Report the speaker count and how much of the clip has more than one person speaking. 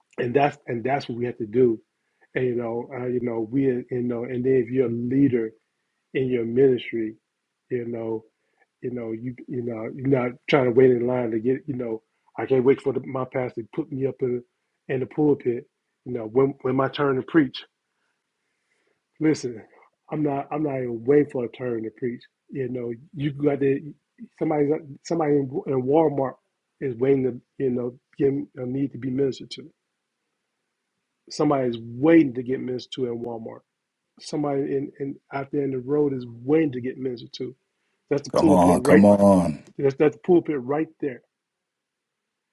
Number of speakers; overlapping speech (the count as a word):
two, about 2%